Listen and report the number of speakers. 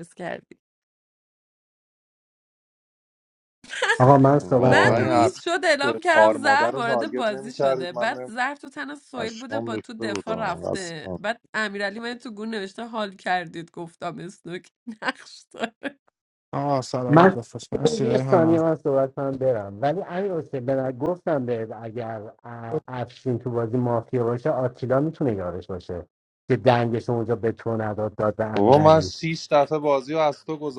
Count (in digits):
4